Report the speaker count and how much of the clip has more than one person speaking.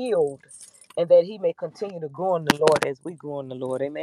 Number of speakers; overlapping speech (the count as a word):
one, no overlap